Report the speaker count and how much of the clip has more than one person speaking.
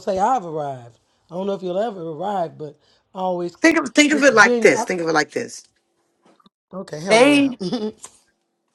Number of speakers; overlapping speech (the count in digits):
2, about 14%